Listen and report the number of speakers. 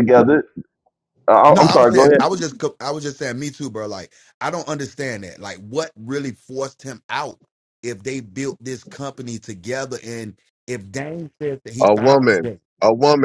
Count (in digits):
3